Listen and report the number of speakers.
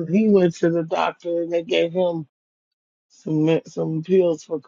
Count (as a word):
one